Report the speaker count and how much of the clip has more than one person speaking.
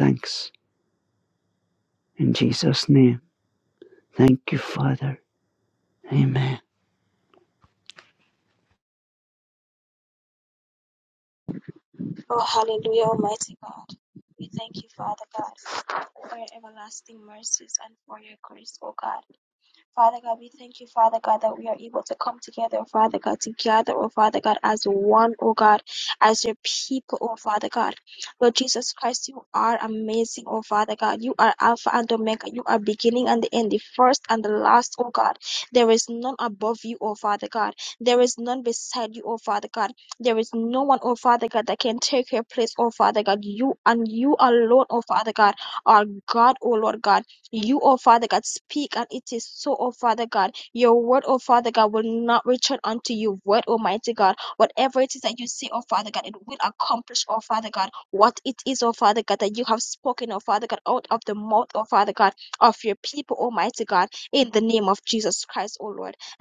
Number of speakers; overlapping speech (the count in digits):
2, no overlap